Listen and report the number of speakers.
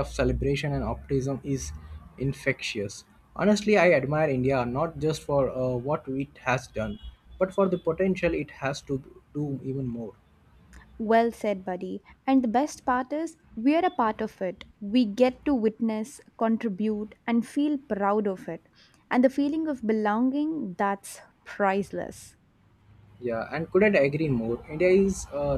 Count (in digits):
2